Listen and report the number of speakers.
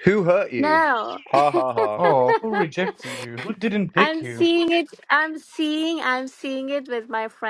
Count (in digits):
3